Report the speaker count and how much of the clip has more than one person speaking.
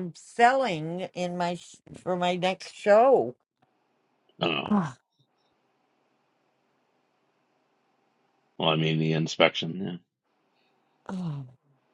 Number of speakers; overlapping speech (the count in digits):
2, under 1%